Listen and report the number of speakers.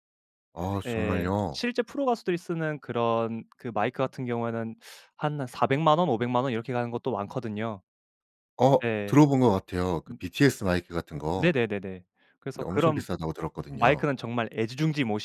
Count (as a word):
two